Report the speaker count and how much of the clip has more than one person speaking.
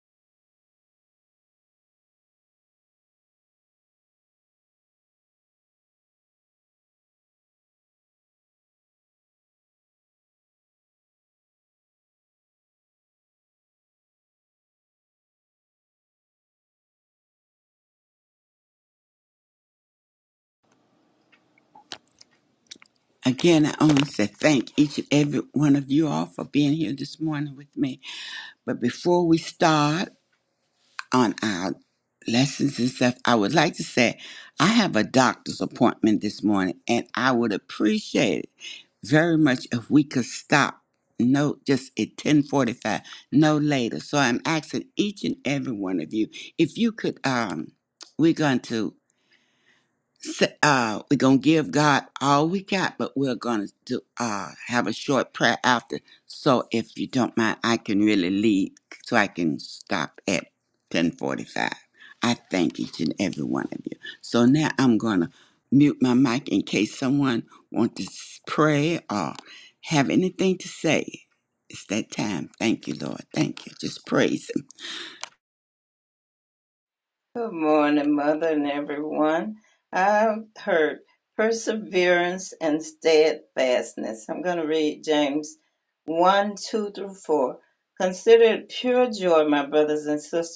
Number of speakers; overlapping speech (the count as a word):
two, no overlap